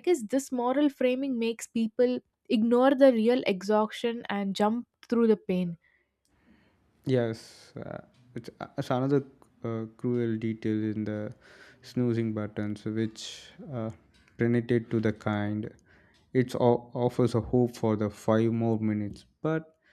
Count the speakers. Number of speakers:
2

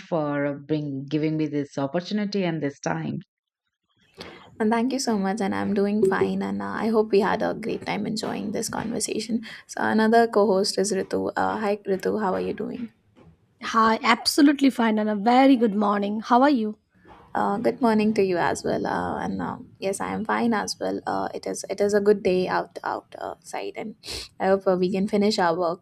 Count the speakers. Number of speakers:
3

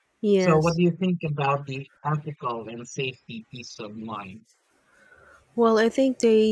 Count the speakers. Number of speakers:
2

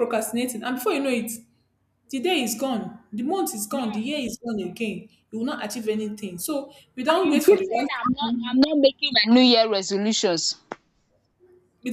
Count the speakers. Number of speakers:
2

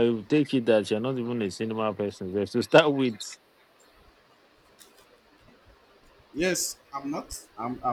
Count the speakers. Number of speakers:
2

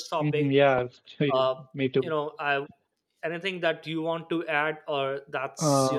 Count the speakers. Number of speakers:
2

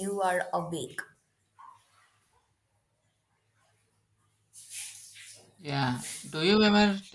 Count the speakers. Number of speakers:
2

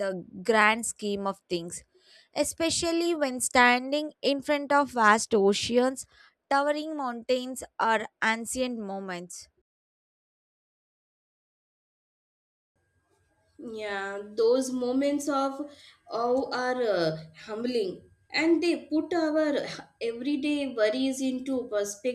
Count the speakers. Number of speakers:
2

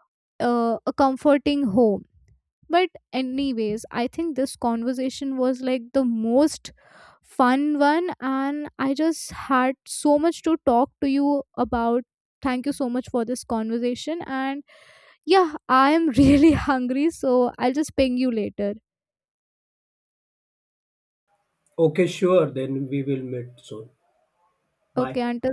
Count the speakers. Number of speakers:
2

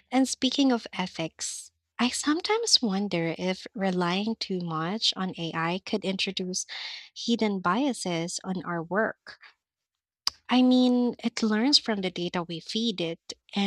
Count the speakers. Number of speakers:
1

